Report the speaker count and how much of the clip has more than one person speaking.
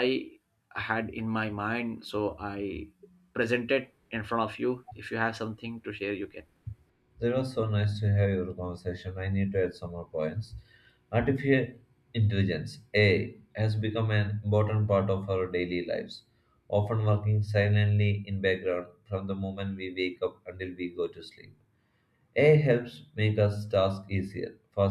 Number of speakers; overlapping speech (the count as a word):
two, no overlap